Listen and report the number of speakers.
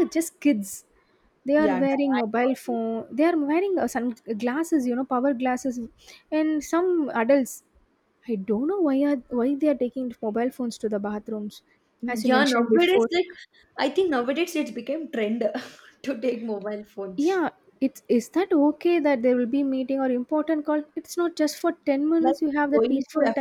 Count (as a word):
two